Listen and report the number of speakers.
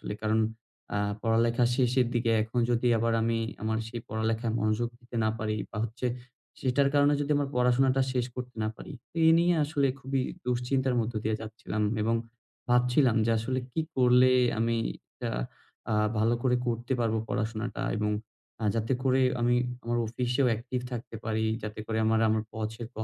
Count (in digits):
1